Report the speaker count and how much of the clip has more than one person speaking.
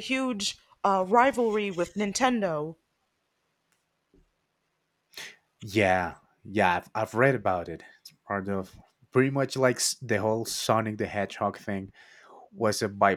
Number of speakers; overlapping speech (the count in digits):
2, no overlap